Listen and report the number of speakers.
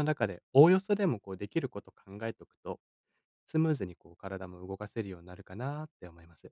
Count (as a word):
one